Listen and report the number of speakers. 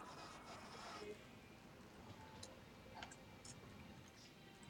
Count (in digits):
0